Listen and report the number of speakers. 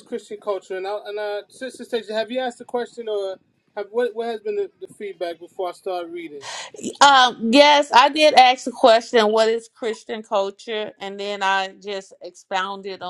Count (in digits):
2